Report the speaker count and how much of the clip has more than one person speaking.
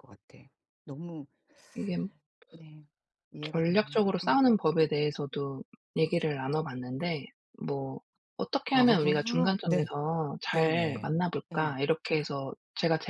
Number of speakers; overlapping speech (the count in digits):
2, about 21%